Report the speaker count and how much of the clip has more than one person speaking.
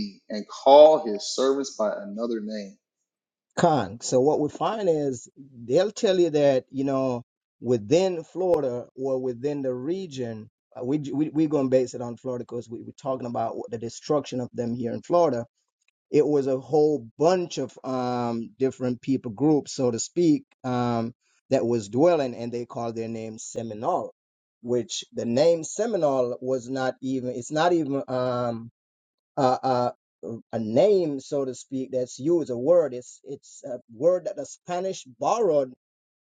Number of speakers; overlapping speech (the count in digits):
2, no overlap